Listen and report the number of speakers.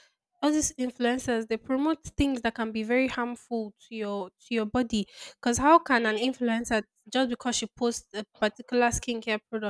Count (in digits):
1